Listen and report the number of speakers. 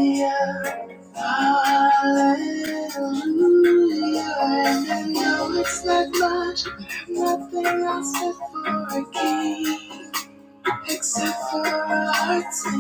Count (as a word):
one